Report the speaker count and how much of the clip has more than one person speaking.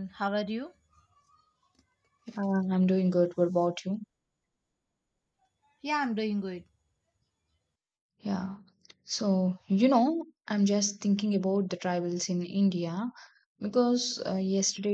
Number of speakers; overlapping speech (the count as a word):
two, no overlap